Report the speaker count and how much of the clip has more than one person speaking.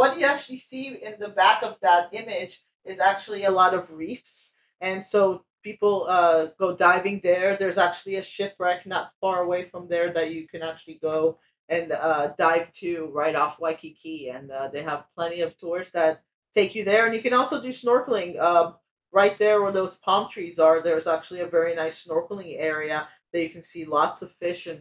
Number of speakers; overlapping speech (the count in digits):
1, no overlap